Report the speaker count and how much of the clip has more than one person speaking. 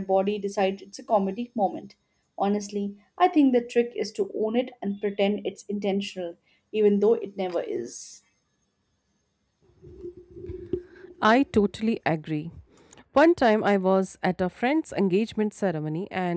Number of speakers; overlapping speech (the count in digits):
2, no overlap